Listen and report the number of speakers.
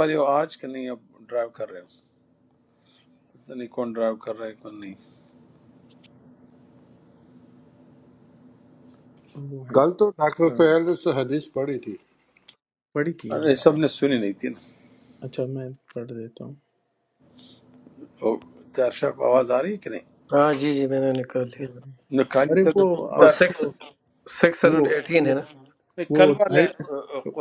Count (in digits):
4